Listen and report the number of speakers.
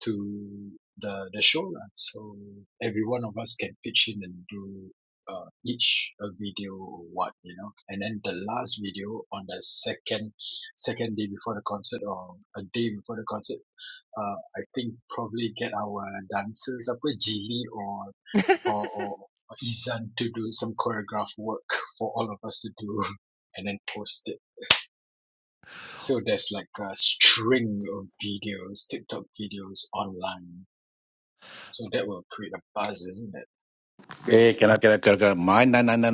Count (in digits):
2